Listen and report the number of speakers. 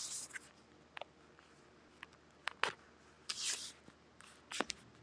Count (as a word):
zero